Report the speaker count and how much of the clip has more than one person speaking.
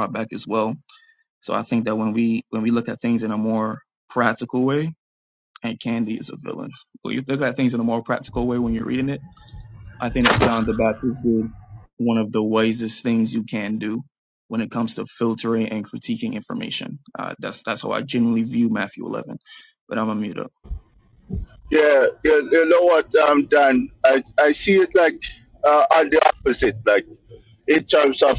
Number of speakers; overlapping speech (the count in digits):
2, no overlap